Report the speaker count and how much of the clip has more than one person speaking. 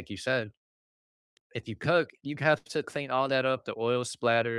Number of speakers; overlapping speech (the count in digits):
1, no overlap